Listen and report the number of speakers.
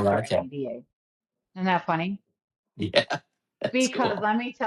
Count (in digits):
2